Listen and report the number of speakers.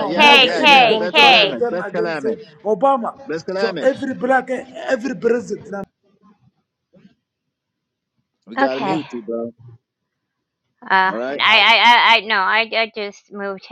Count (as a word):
three